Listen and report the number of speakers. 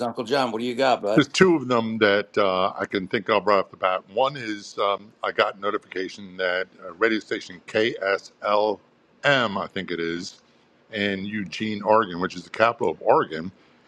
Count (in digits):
2